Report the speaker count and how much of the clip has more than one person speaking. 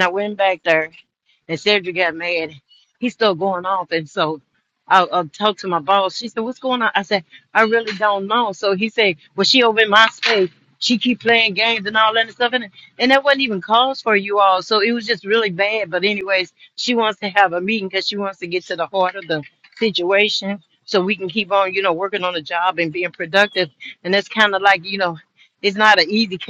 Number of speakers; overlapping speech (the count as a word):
one, no overlap